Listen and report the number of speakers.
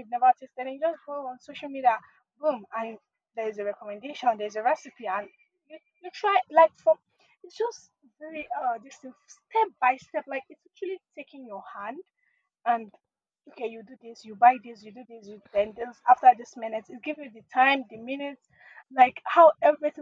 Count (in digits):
1